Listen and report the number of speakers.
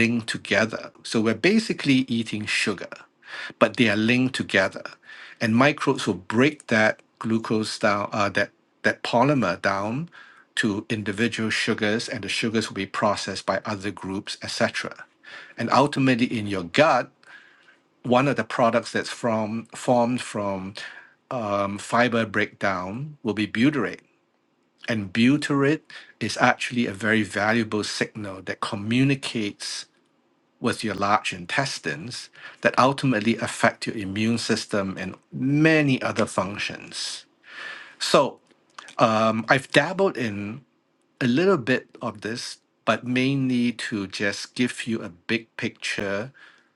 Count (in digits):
1